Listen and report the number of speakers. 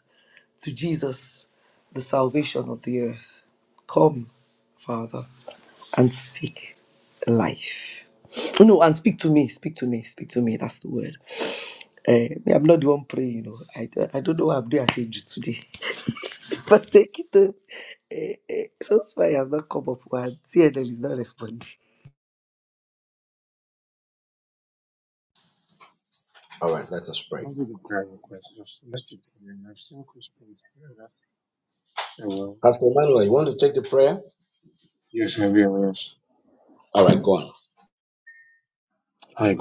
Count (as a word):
three